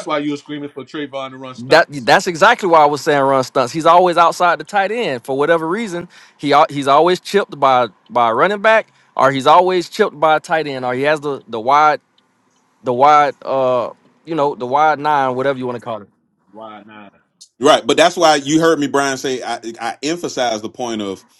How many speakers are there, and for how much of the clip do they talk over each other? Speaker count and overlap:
3, about 1%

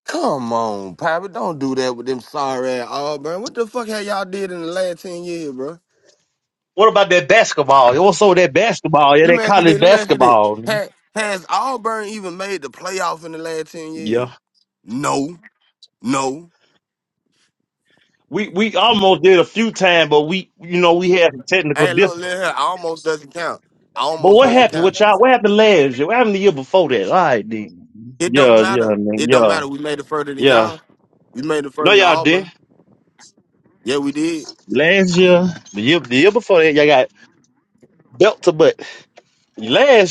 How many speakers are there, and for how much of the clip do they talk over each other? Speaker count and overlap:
2, about 13%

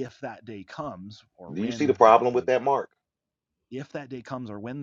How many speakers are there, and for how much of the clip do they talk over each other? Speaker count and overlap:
2, about 20%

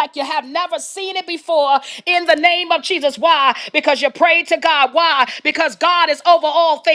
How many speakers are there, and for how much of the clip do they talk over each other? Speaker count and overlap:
1, no overlap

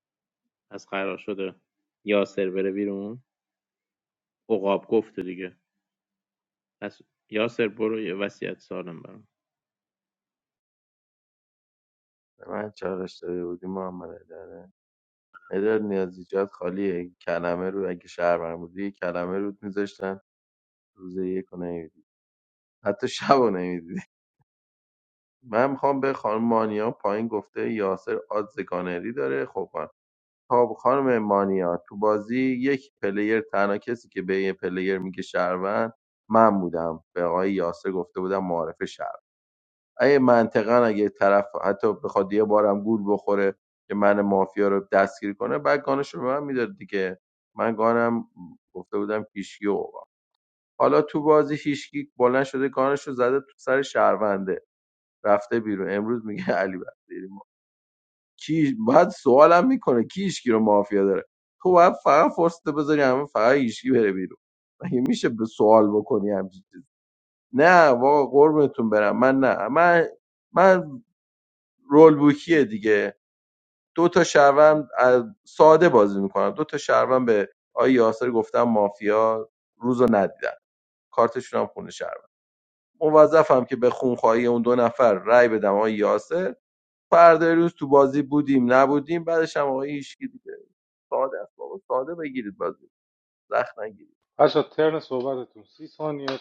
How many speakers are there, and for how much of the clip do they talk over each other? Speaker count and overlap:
3, no overlap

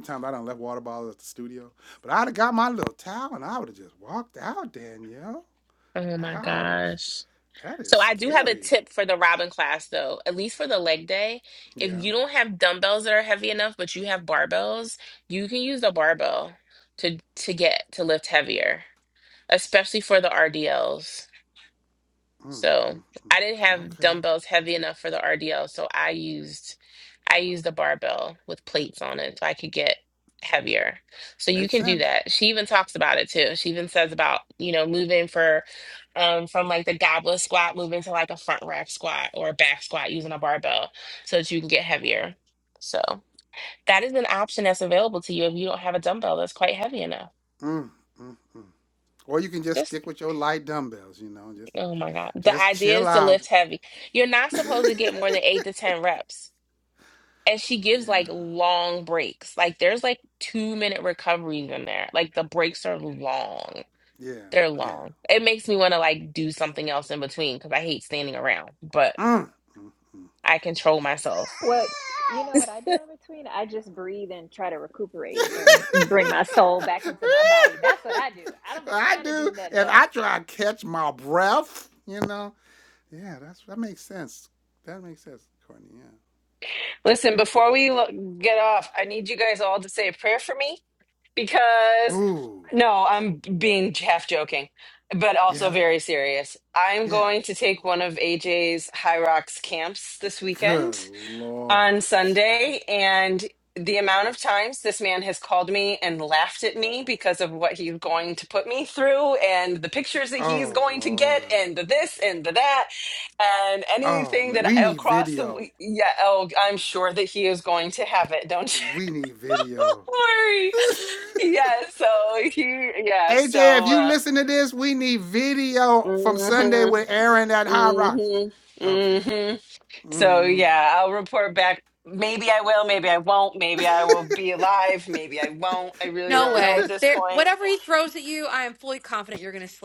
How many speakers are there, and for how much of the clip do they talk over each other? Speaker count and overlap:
5, about 11%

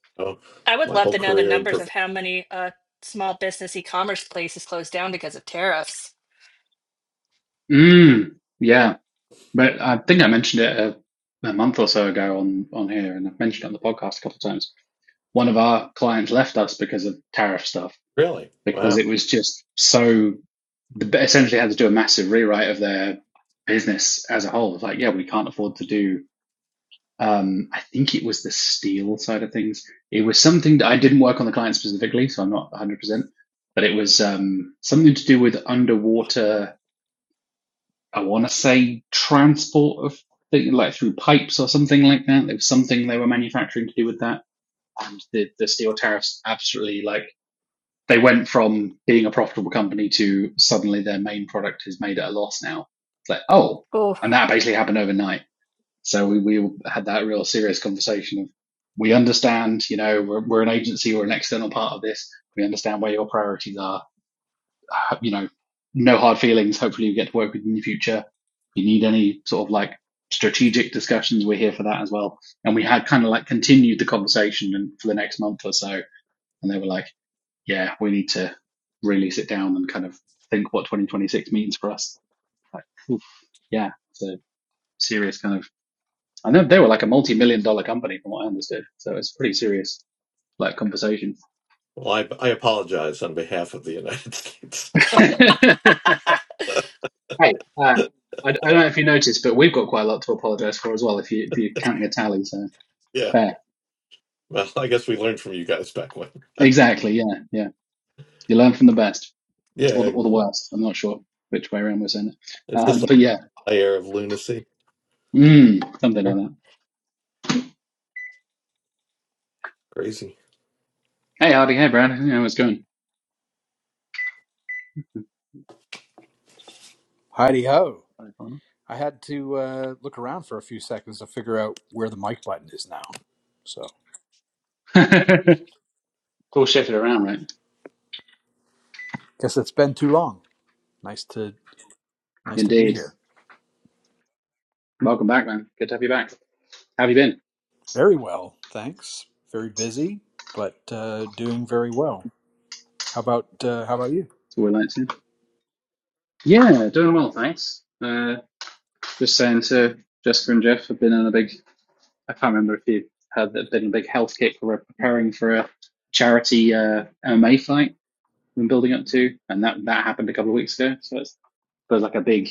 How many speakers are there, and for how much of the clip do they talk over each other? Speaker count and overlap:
4, about 1%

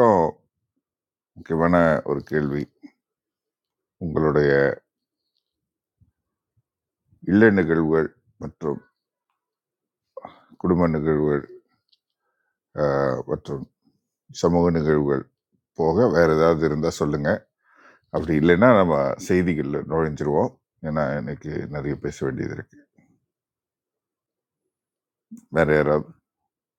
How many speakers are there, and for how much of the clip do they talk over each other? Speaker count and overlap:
1, no overlap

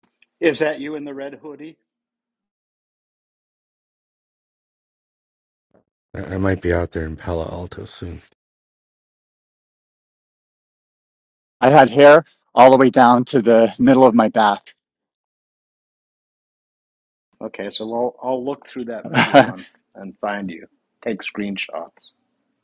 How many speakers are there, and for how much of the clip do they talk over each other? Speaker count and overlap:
3, no overlap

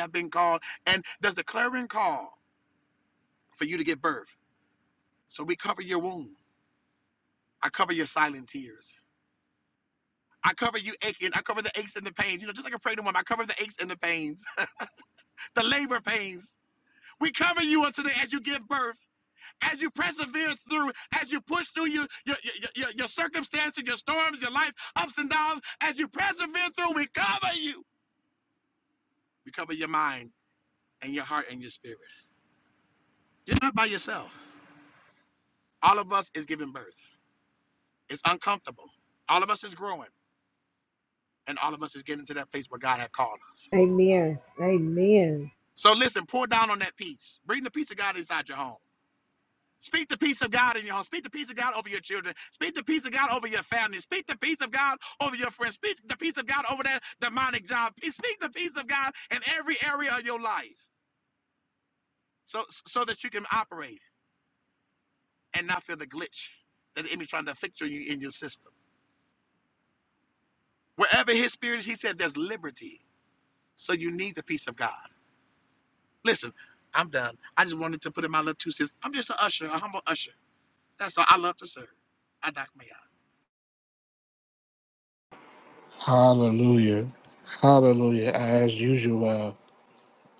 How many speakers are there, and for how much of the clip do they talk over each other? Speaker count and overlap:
3, no overlap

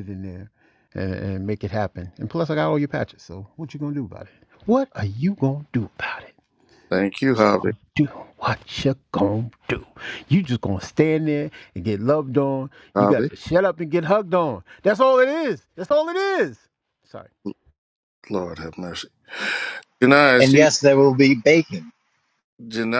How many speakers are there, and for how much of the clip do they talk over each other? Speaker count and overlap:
3, about 3%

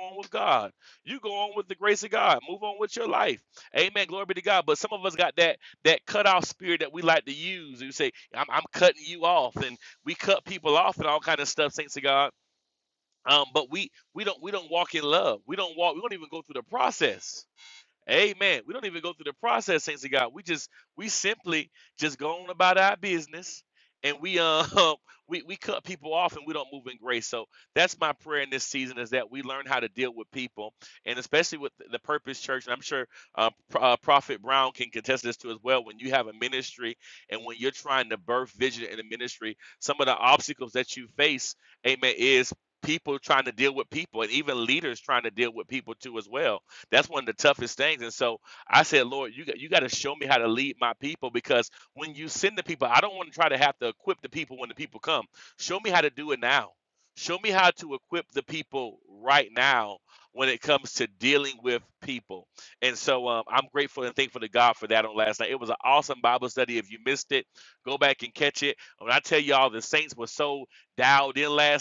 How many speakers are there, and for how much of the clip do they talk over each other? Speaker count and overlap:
1, no overlap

